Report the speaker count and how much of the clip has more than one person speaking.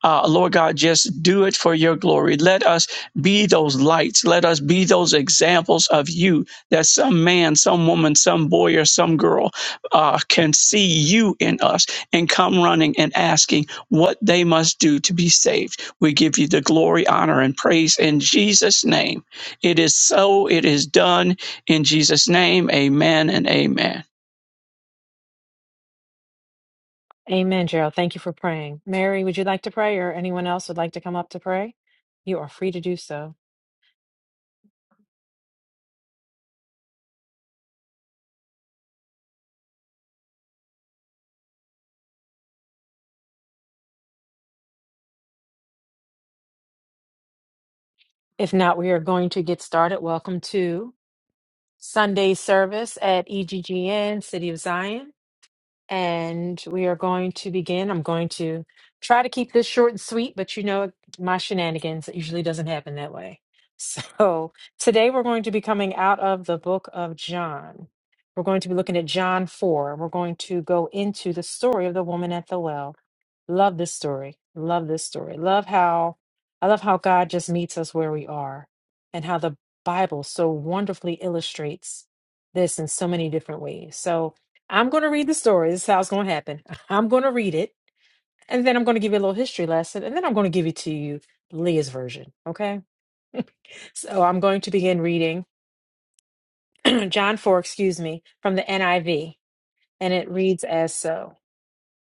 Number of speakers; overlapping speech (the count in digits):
2, no overlap